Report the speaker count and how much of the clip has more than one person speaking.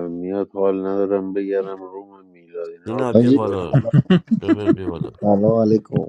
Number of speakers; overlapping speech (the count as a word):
three, about 14%